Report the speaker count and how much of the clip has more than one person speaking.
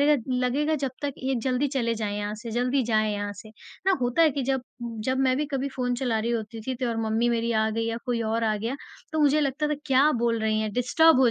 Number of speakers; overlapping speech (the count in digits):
1, no overlap